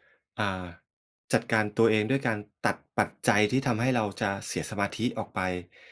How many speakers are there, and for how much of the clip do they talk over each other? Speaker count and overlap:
1, no overlap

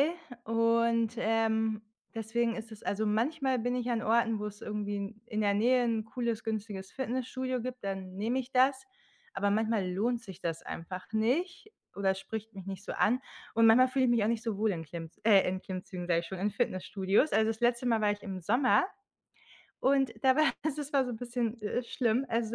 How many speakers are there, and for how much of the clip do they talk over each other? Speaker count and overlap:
1, no overlap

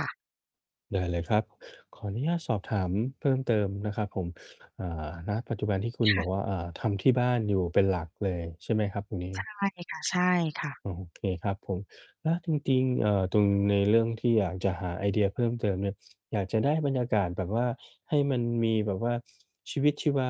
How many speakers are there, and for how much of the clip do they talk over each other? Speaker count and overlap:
2, about 1%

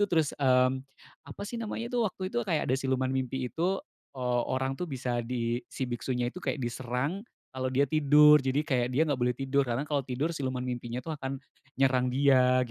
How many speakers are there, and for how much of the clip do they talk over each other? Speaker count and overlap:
1, no overlap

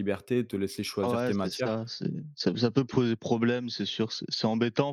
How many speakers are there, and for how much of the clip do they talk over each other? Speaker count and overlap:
2, about 16%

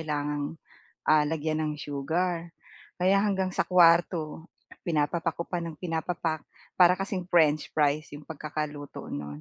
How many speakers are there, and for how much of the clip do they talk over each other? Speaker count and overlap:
1, no overlap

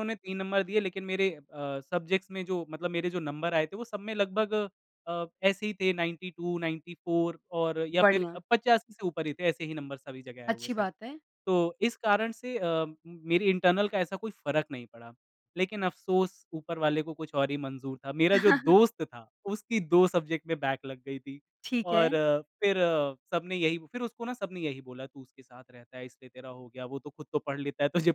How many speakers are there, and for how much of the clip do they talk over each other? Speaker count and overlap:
2, about 4%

